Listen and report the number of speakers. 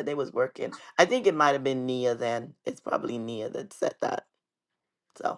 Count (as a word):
one